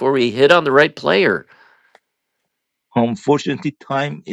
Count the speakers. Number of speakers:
two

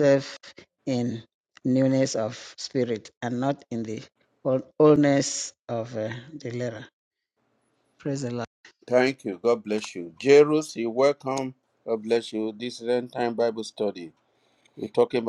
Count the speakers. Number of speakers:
two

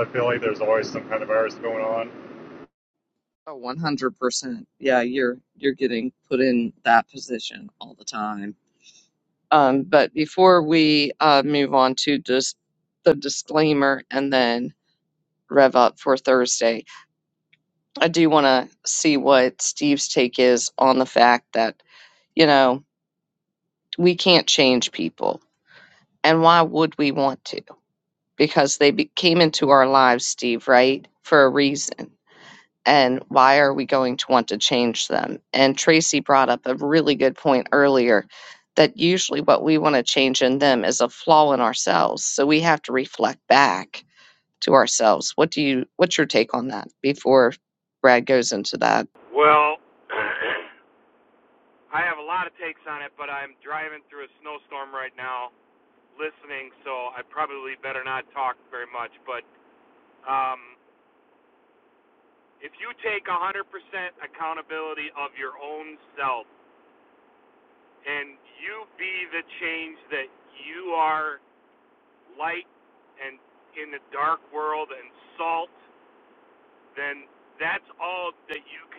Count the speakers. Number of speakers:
three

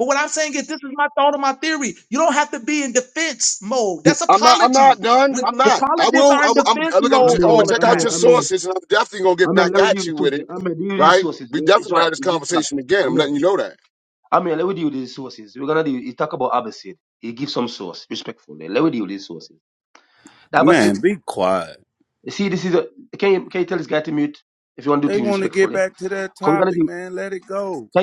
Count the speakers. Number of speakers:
four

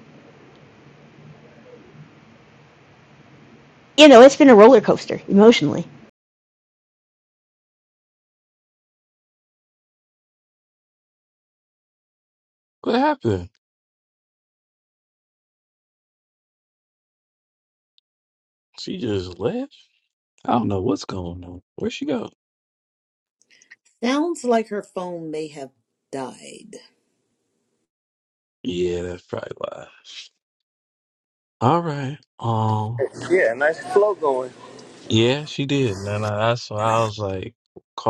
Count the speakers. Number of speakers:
four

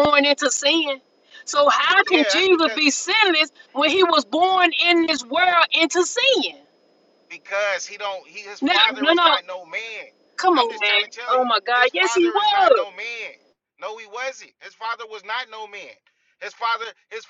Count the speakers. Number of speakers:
two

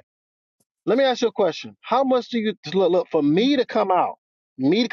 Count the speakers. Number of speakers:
one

